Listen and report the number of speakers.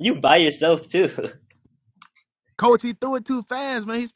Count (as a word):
two